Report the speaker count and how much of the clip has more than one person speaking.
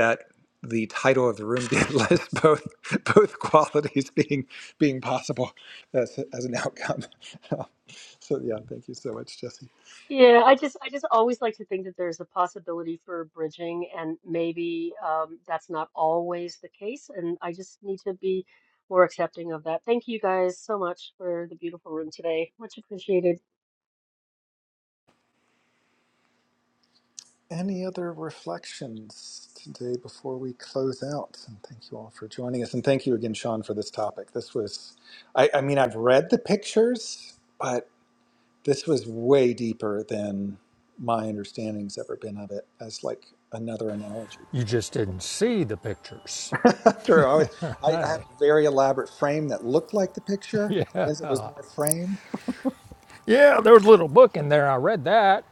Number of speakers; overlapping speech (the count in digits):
3, about 1%